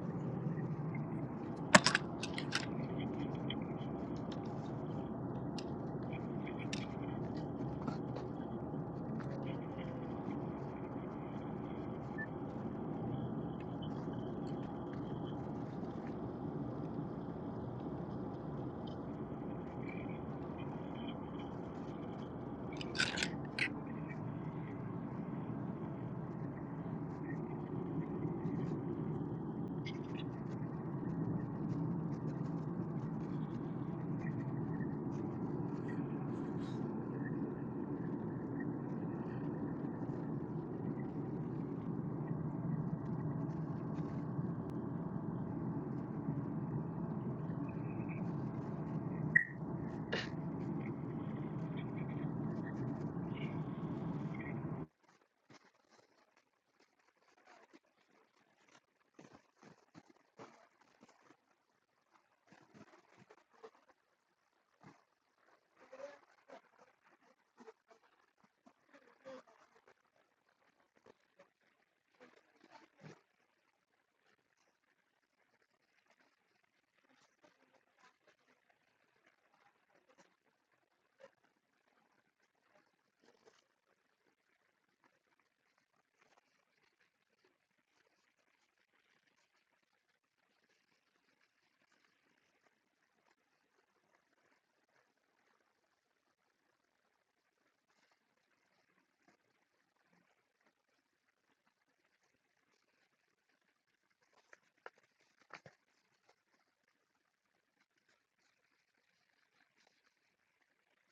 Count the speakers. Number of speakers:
0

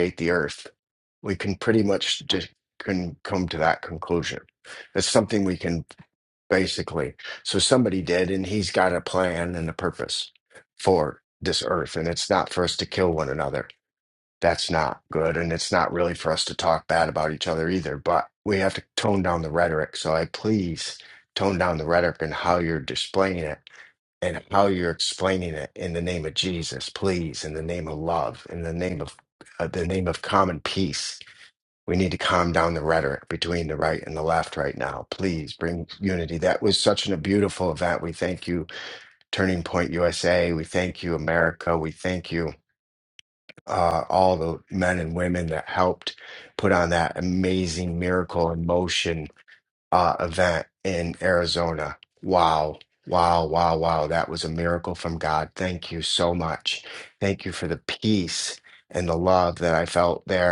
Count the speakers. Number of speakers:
1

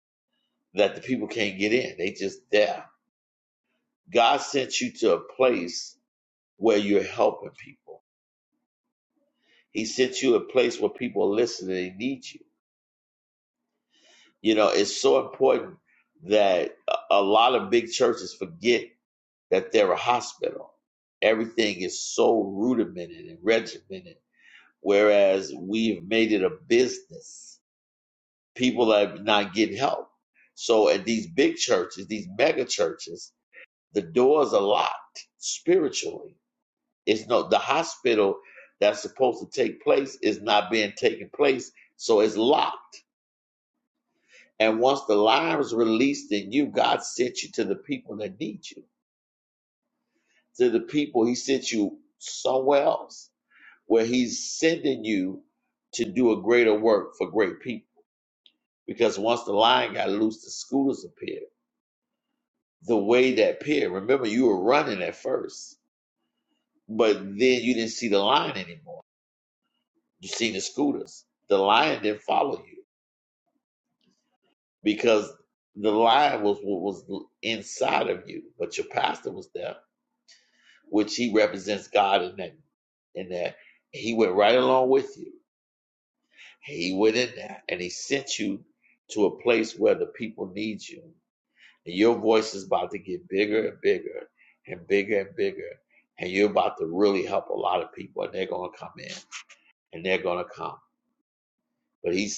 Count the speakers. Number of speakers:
1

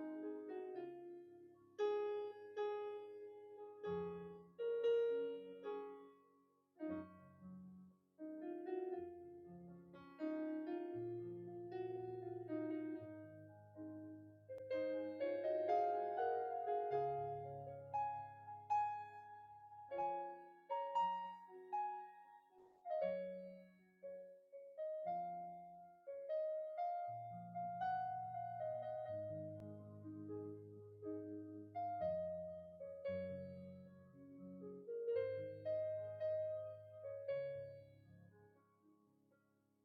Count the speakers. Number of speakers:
0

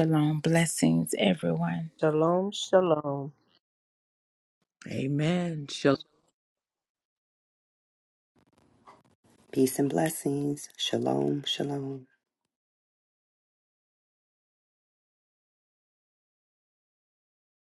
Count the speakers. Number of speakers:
4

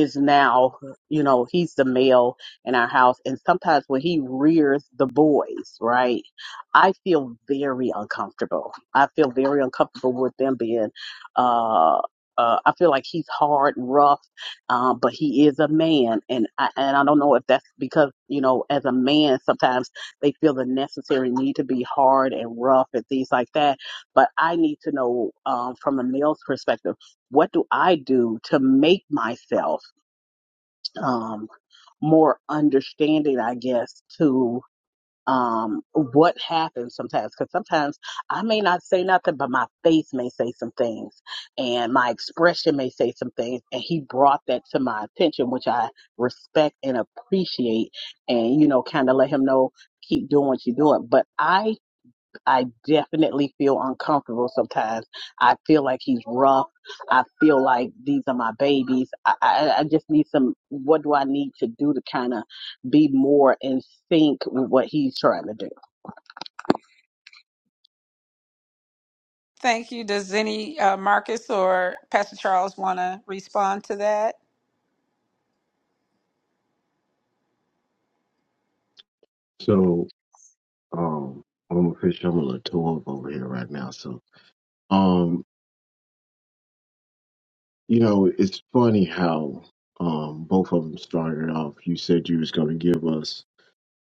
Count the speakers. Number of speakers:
3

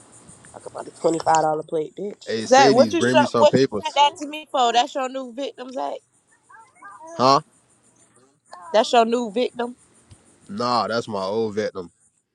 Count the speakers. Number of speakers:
3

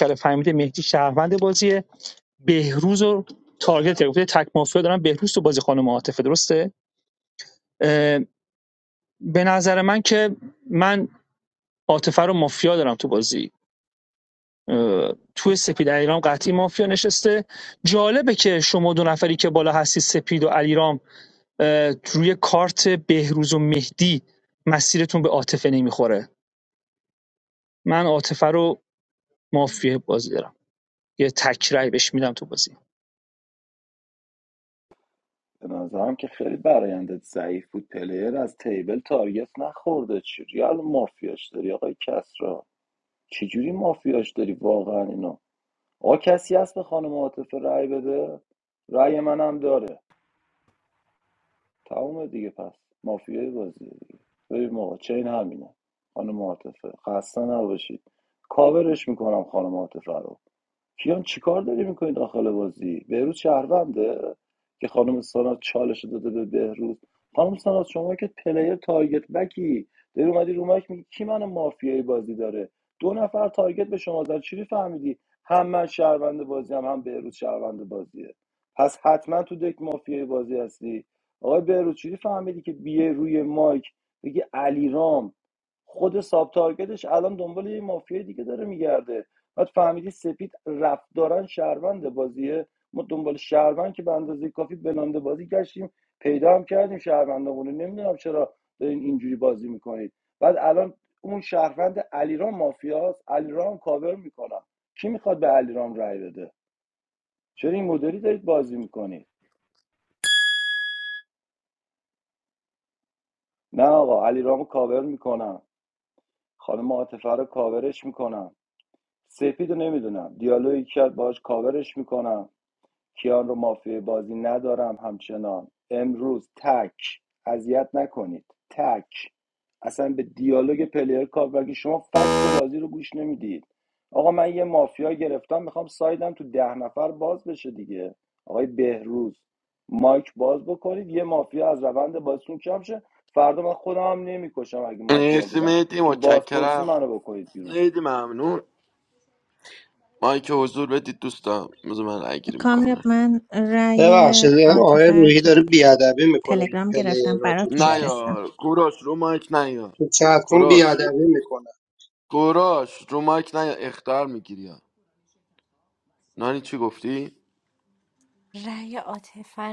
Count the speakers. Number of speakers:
6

